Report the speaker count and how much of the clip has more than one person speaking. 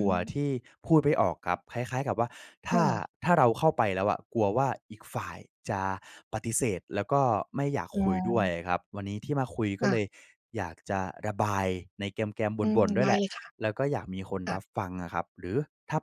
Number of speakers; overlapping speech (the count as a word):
two, about 10%